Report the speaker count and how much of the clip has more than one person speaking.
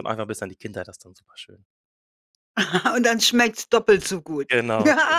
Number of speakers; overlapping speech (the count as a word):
two, no overlap